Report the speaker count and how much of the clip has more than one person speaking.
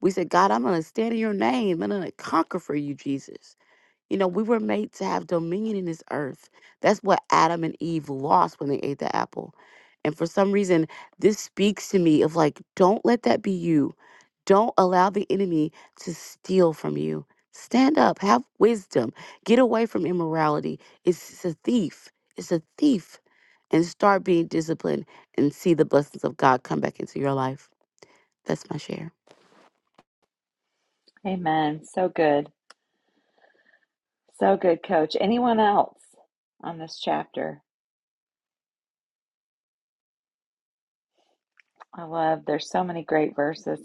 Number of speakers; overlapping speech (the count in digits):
2, no overlap